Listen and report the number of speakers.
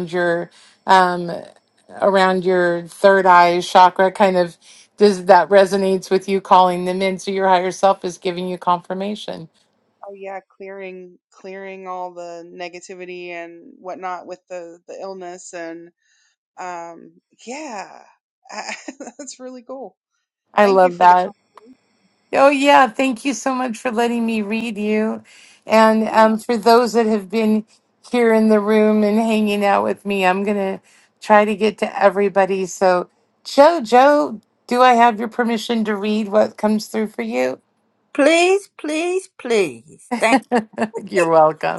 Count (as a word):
three